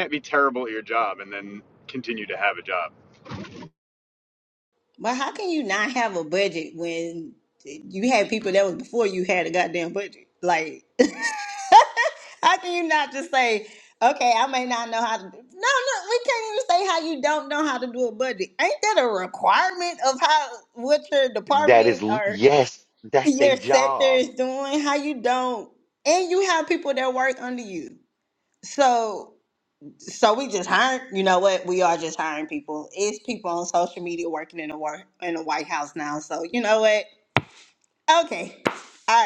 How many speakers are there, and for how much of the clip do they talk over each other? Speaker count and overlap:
three, about 5%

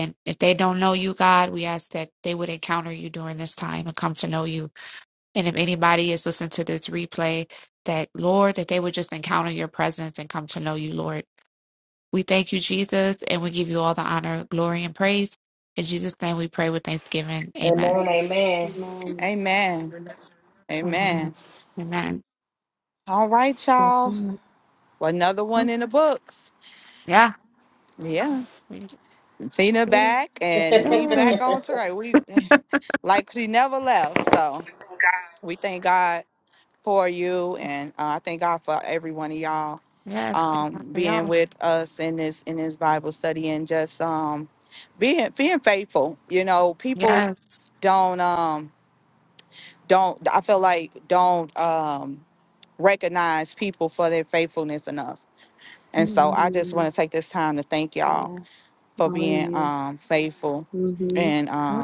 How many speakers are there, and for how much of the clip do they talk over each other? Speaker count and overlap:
four, about 8%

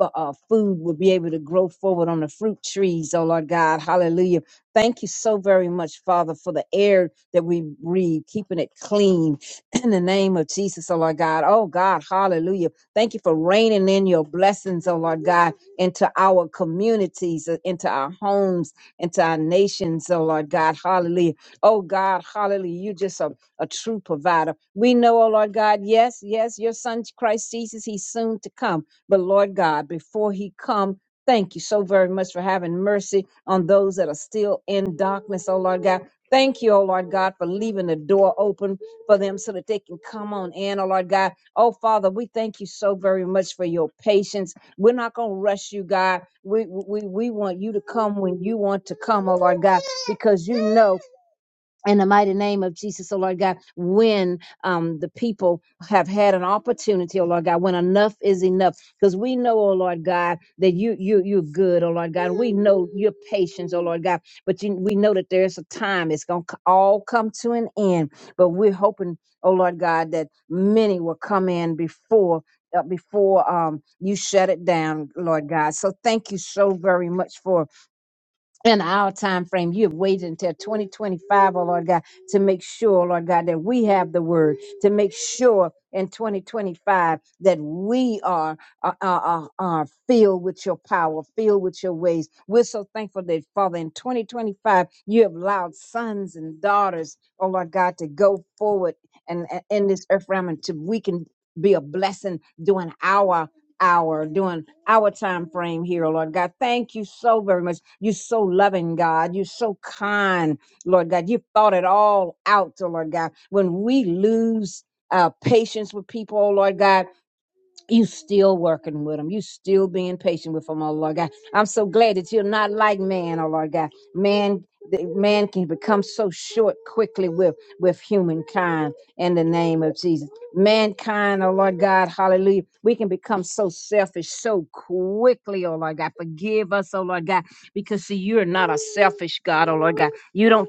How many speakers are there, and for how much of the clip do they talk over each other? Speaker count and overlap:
one, no overlap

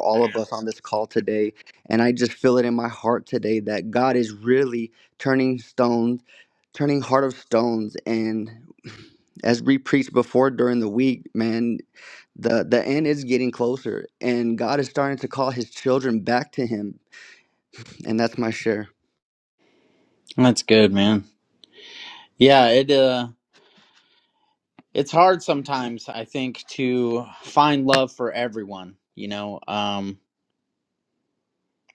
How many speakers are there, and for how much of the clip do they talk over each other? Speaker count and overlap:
two, no overlap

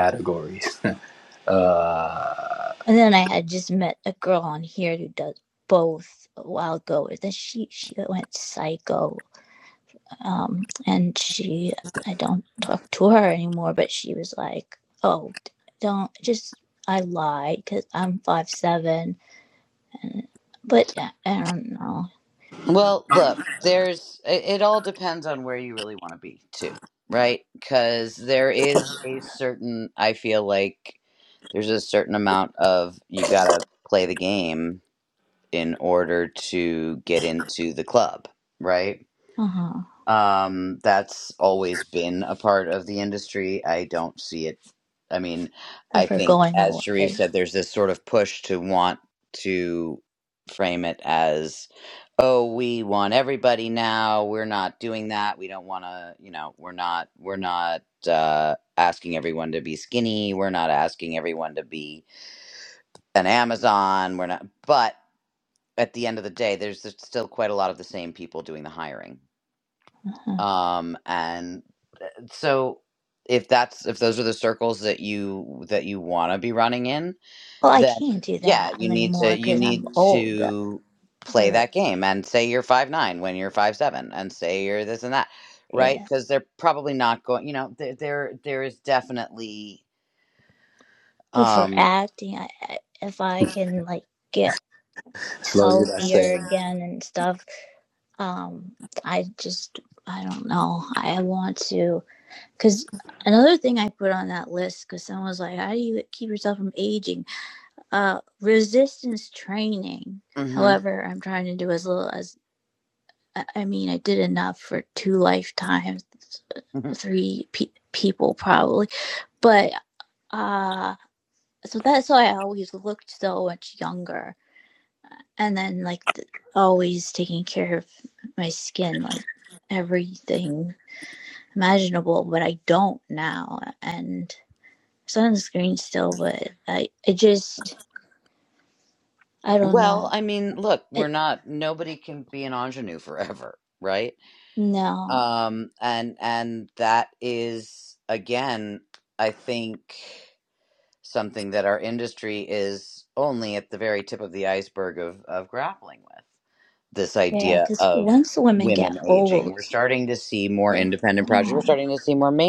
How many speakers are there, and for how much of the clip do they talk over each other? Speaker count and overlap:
three, about 6%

